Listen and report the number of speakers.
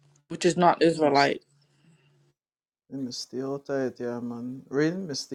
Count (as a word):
two